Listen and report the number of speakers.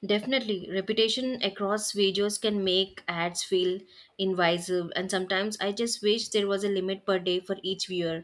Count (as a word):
one